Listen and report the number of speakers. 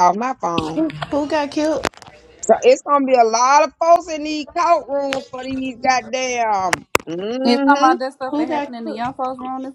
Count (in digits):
3